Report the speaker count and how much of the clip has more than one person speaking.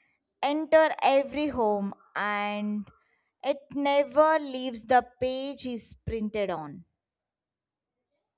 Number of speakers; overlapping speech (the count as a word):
one, no overlap